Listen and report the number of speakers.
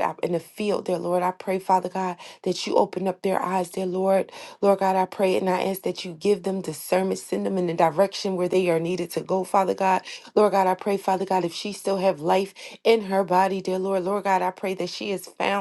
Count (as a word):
one